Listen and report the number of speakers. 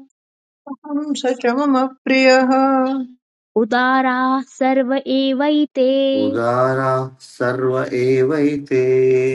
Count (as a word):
three